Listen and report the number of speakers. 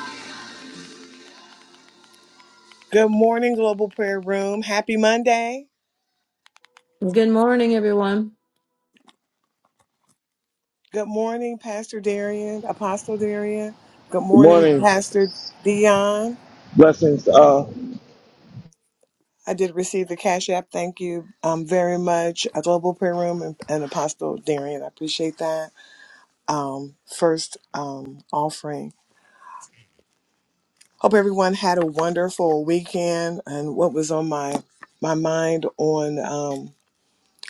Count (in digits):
3